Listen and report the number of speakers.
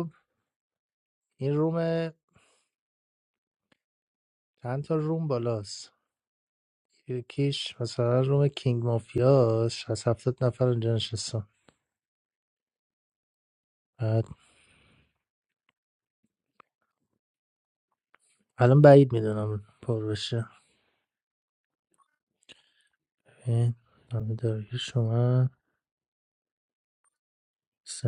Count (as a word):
one